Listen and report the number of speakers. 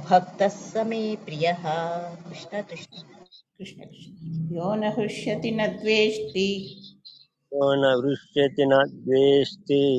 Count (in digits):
3